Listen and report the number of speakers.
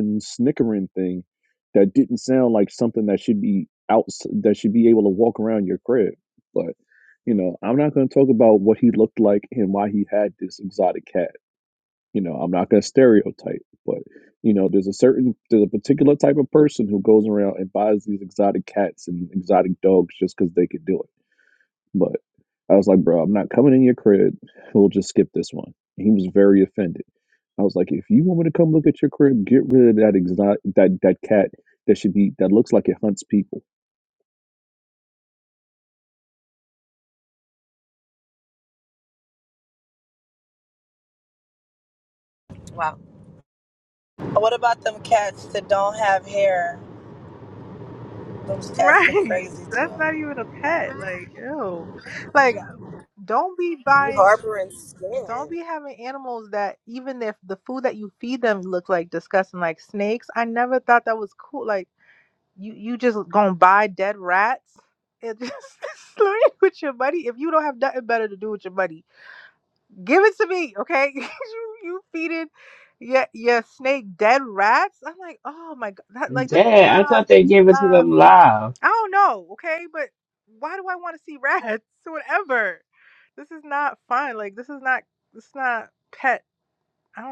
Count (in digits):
5